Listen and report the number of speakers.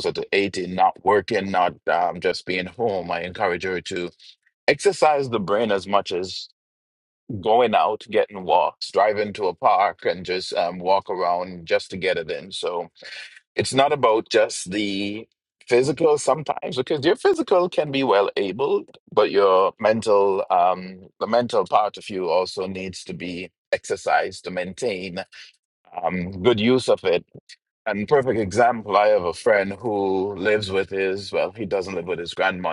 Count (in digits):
1